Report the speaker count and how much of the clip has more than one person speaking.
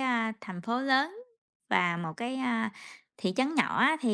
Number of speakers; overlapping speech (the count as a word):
one, no overlap